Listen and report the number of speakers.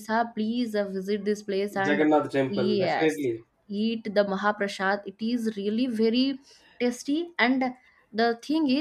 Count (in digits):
2